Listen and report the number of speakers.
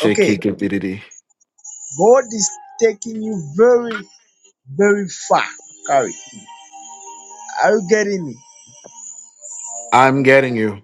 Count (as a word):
two